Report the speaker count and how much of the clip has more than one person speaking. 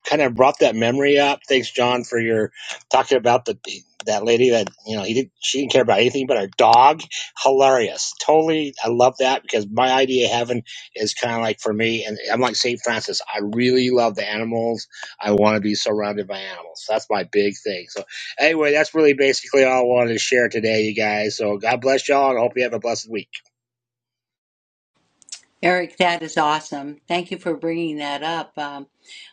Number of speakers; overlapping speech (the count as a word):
two, no overlap